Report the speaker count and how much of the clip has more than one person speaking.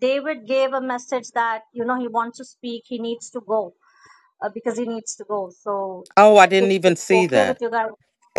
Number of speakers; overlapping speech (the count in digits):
2, about 11%